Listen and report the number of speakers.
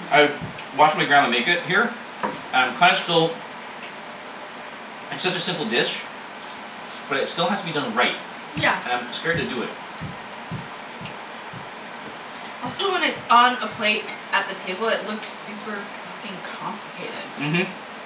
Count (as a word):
two